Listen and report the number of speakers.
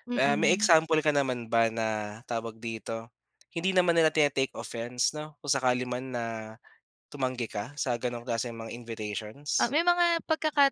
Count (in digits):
2